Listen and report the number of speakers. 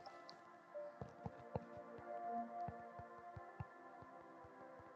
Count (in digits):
0